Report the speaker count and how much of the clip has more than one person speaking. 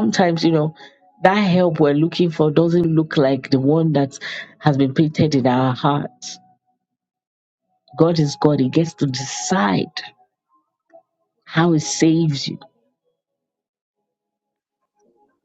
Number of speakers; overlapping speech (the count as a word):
one, no overlap